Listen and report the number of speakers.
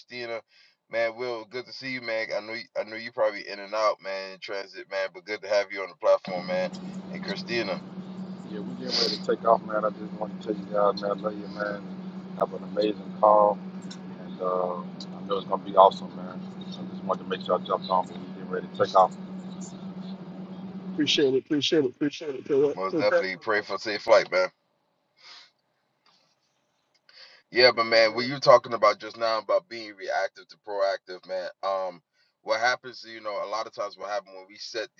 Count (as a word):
three